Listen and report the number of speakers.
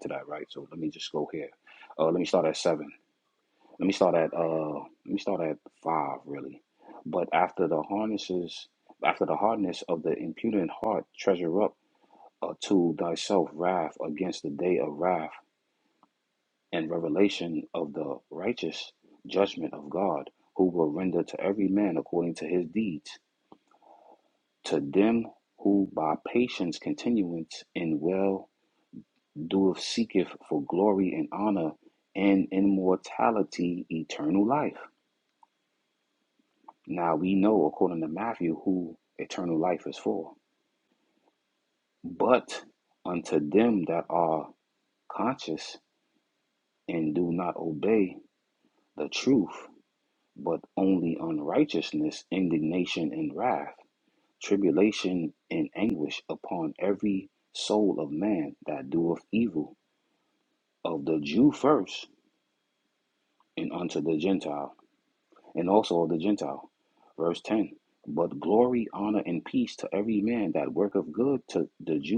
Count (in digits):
1